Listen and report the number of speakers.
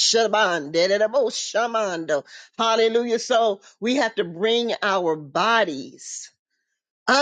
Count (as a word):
one